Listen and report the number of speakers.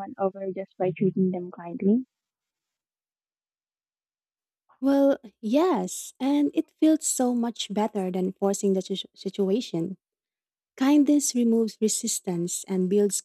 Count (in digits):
2